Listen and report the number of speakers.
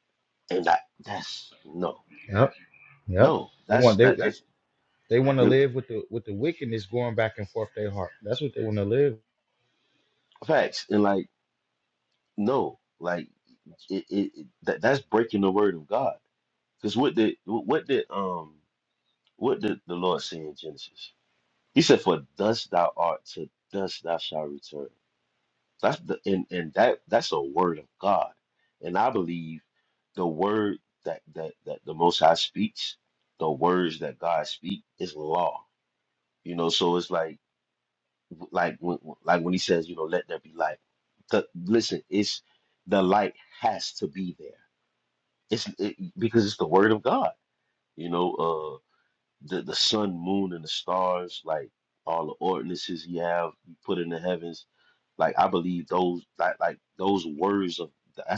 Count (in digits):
2